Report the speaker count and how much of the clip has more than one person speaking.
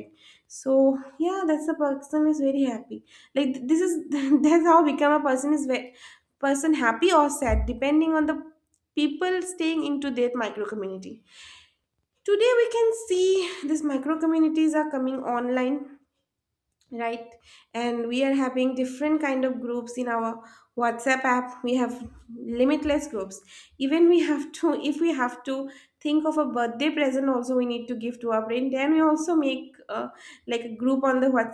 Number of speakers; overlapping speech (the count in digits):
1, no overlap